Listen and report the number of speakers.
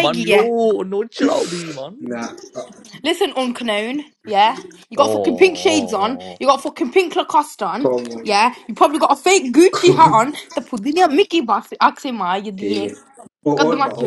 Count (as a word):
three